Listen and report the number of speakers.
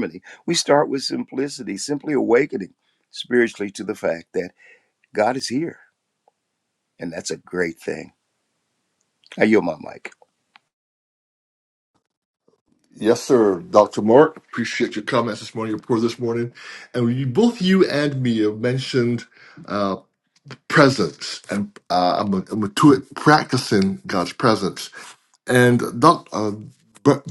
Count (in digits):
2